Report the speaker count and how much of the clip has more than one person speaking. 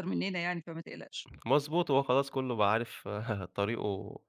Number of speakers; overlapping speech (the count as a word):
two, no overlap